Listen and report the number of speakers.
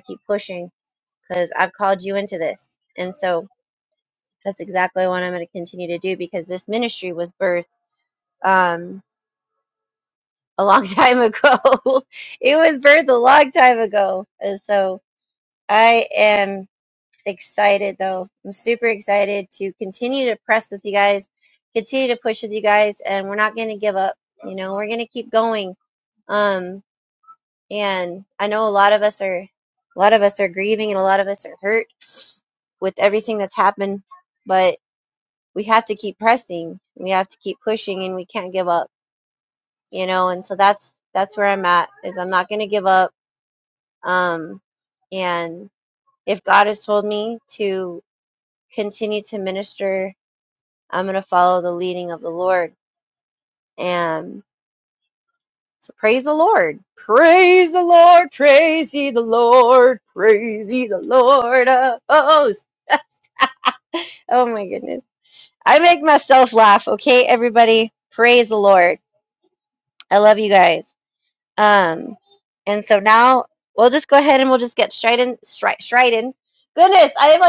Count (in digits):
1